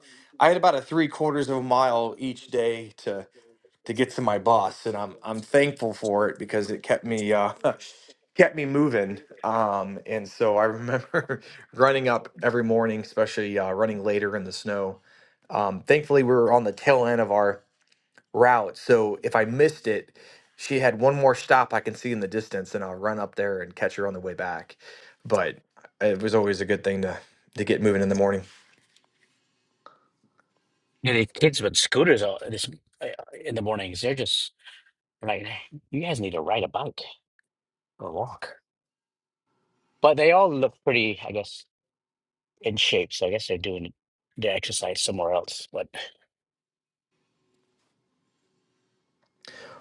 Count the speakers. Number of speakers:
two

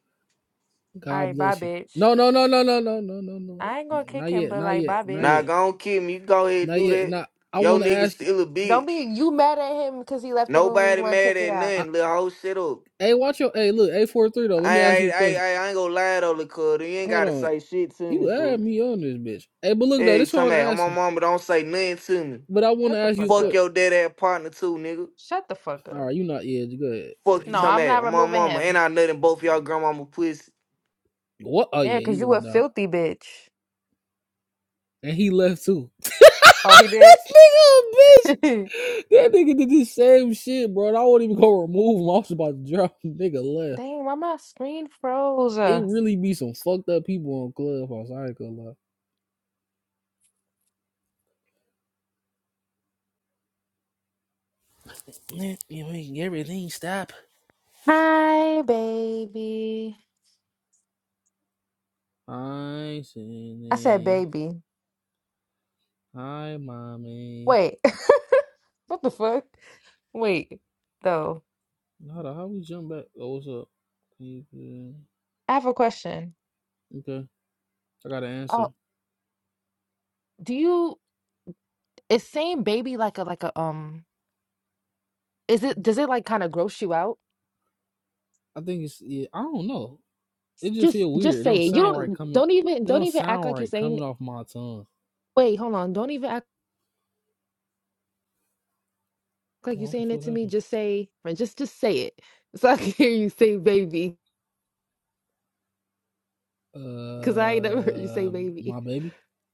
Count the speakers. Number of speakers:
three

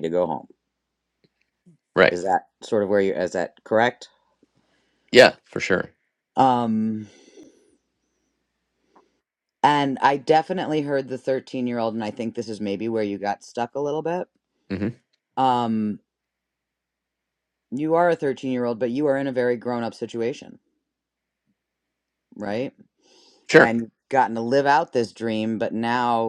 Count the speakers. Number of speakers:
two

